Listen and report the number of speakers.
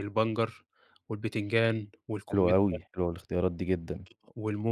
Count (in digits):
2